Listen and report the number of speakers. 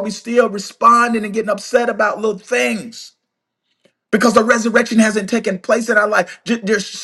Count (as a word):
one